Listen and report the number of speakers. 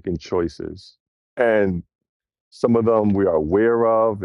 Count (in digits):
1